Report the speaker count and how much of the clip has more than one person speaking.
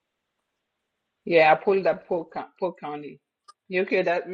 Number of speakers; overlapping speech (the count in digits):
1, no overlap